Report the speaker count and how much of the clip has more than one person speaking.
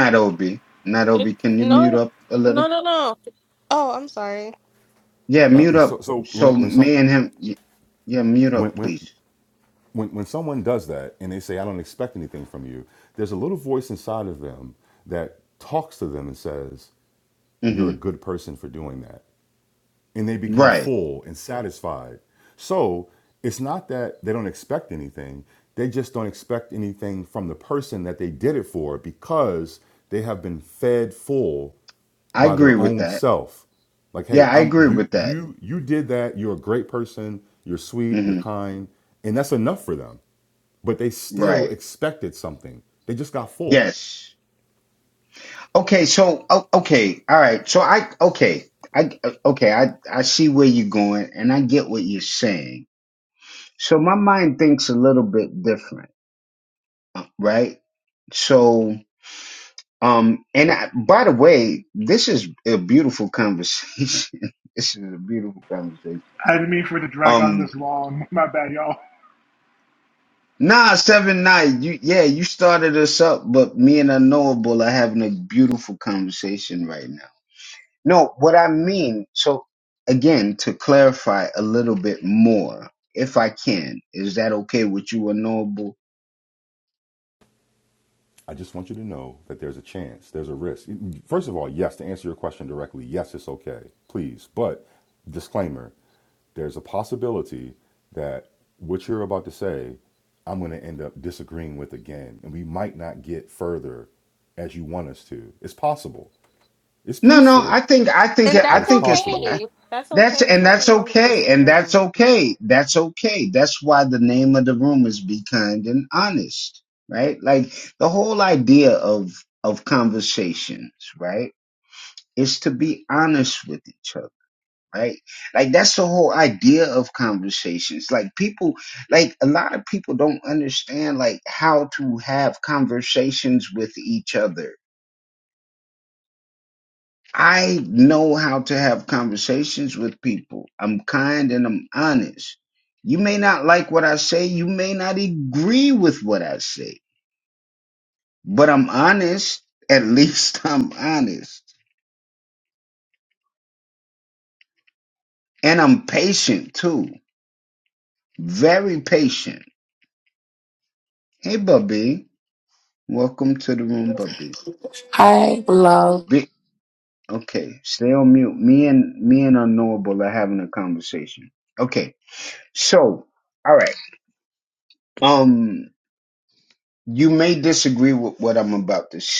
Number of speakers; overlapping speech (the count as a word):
five, about 5%